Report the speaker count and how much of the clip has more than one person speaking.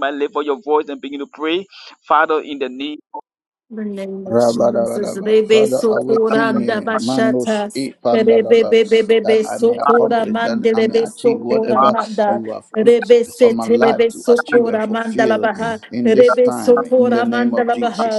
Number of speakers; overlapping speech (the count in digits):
3, about 63%